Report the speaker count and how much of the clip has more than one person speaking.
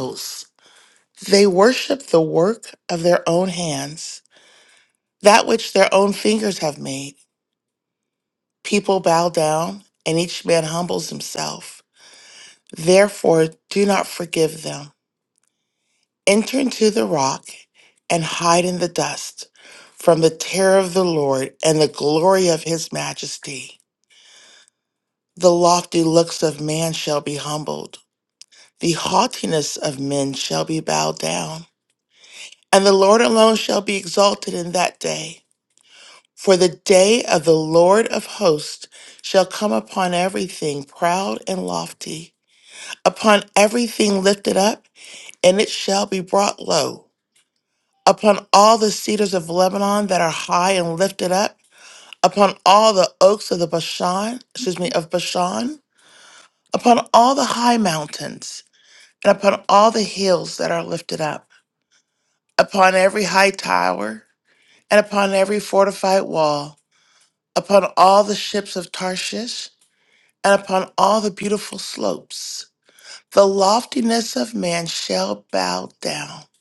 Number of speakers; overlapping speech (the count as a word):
one, no overlap